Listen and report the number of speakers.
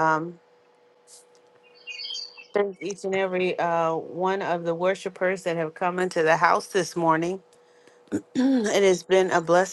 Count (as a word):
one